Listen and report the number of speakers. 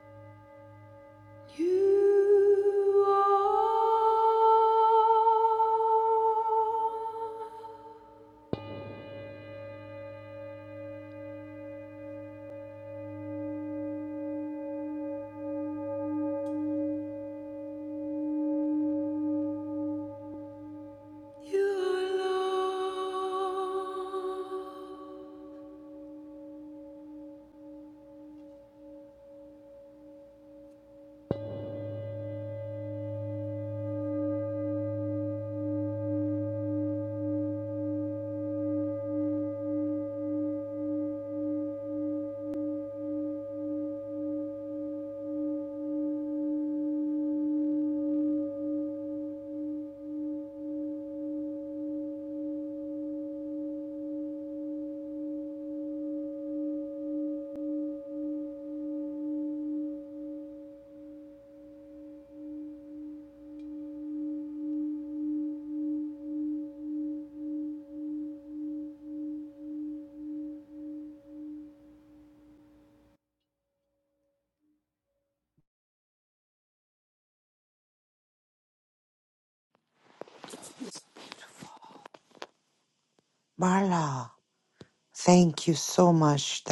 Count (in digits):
2